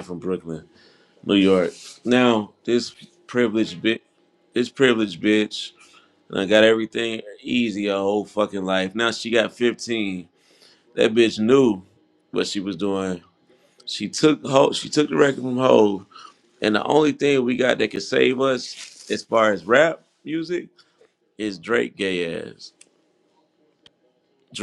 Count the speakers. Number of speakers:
one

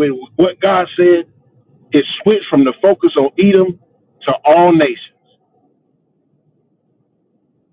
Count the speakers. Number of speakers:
one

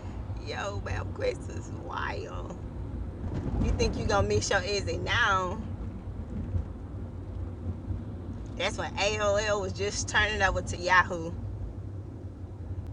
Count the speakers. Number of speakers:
one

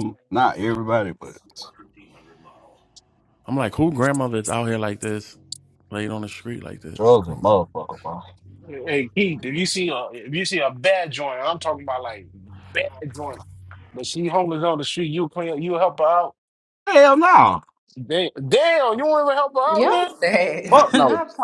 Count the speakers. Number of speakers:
four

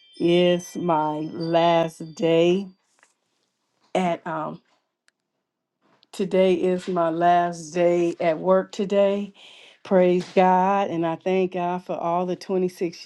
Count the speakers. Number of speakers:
one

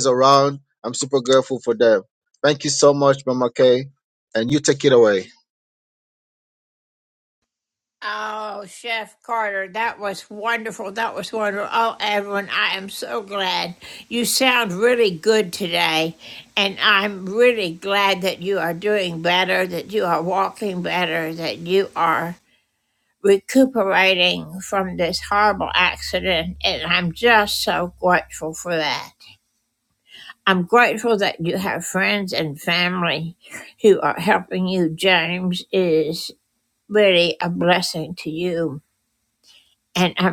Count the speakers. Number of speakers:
two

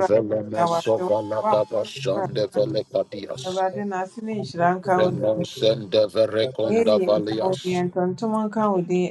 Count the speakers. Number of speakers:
two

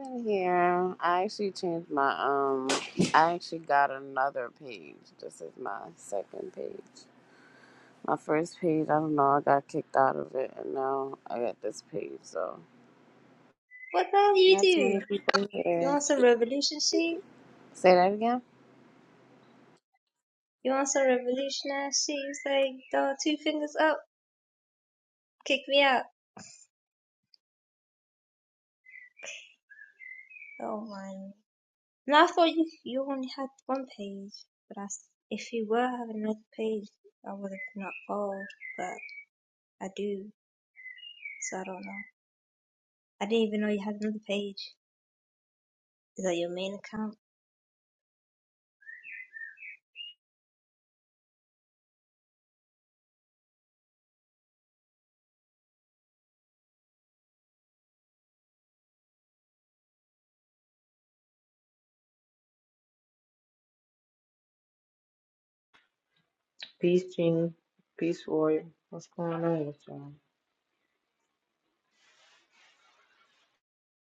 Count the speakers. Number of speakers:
three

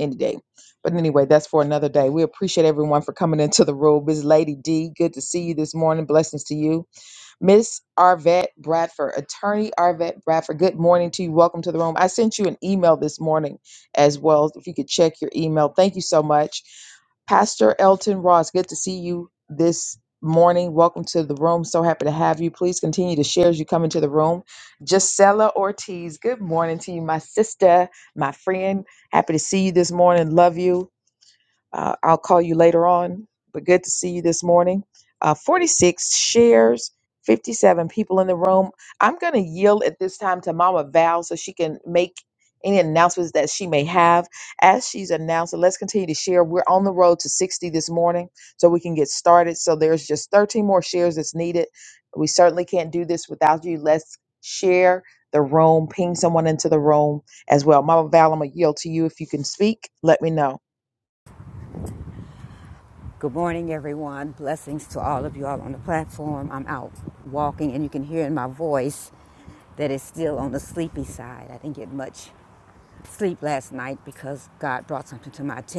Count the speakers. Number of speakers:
two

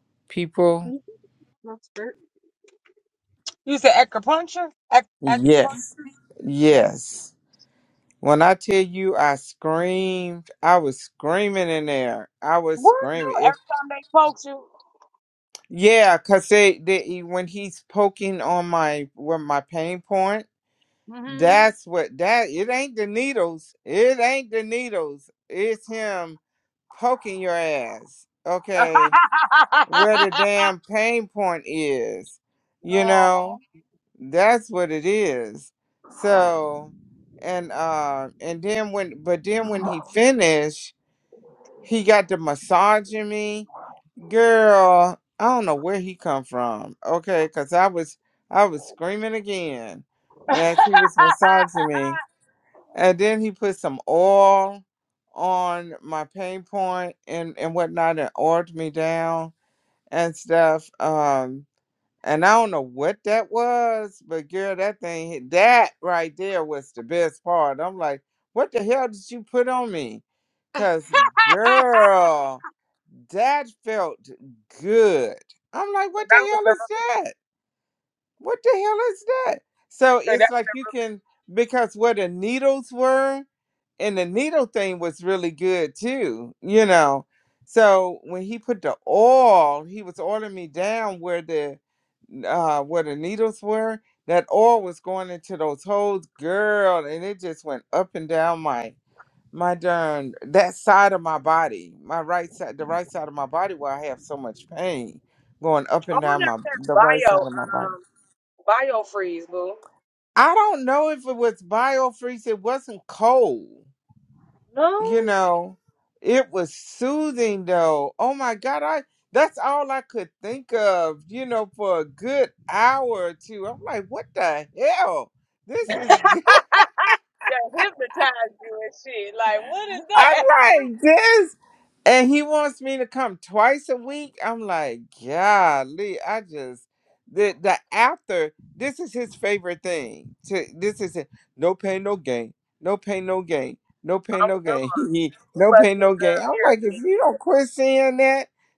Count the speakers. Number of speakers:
two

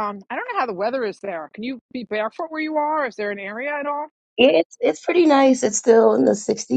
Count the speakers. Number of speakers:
two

